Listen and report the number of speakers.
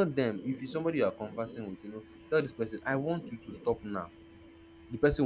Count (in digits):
1